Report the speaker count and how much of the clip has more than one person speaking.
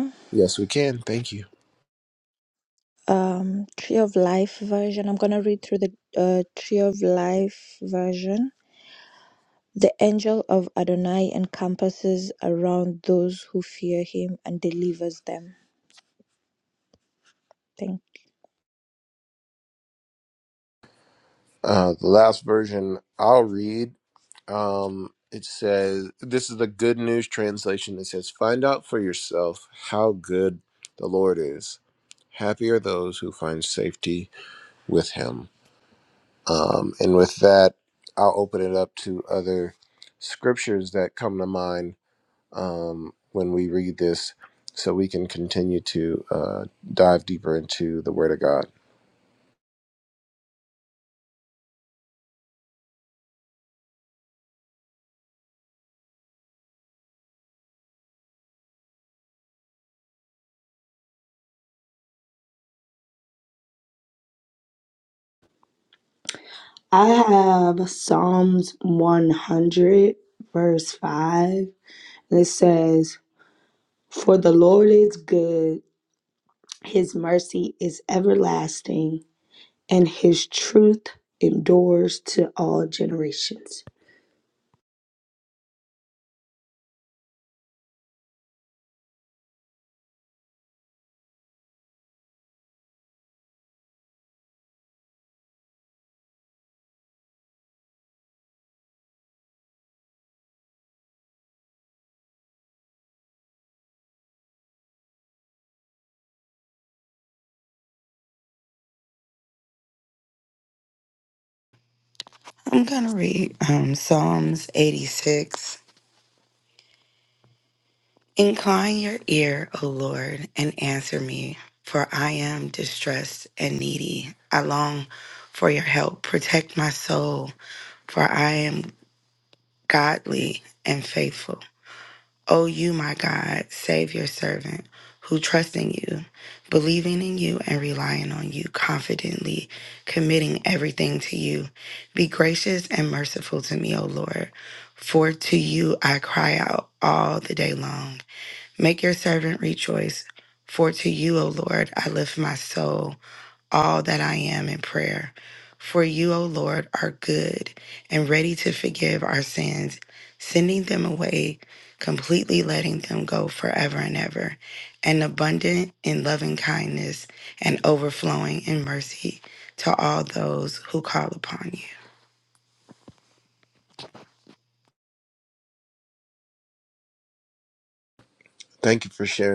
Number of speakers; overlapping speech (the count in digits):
4, no overlap